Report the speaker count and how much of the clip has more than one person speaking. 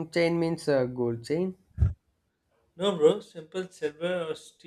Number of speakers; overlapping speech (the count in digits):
2, no overlap